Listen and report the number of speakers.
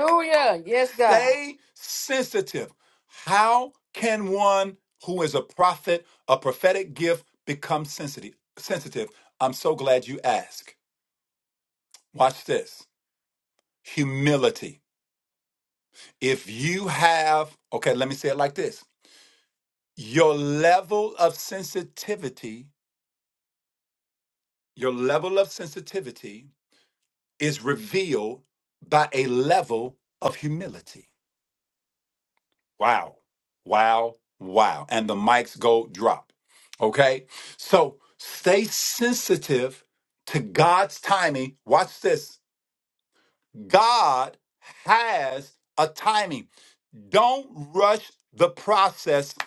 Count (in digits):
2